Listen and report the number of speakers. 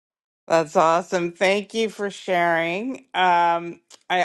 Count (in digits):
1